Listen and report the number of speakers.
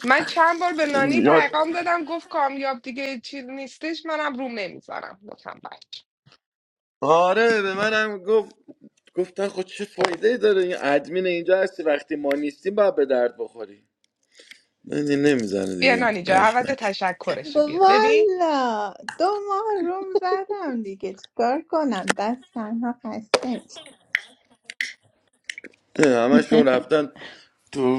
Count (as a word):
three